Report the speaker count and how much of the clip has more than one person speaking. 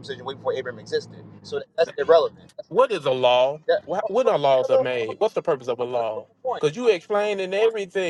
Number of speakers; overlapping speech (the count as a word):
two, about 19%